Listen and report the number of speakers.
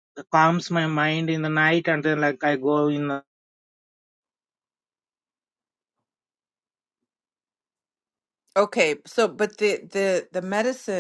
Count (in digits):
2